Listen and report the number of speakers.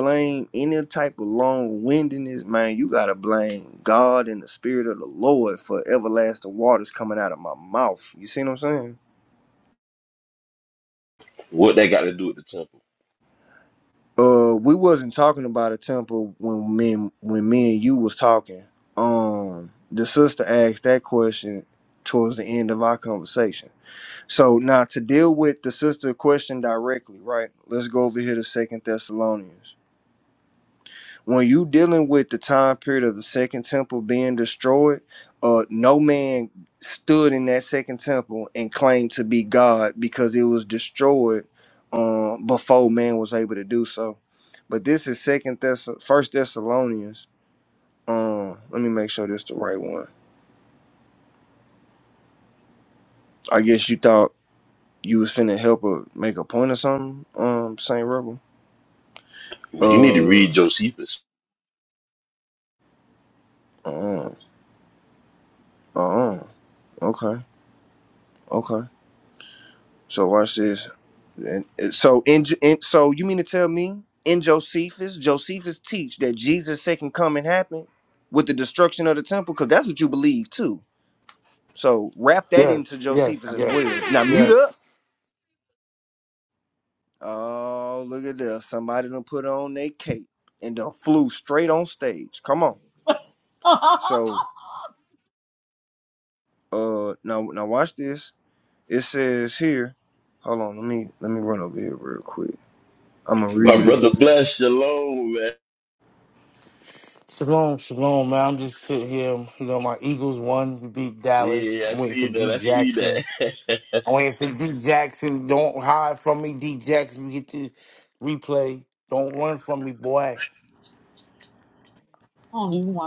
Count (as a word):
four